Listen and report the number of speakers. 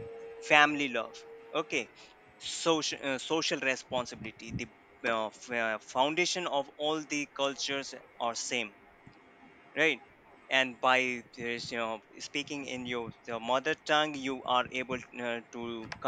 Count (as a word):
one